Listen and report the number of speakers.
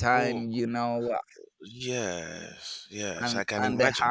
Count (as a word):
two